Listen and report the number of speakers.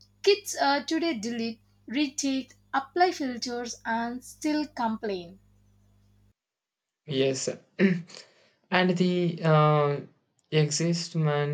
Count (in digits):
2